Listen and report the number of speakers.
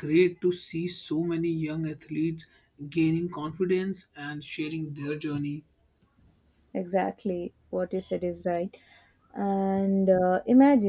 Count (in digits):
2